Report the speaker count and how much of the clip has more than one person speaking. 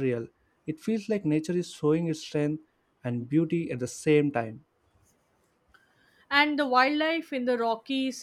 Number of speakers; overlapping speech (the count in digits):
2, no overlap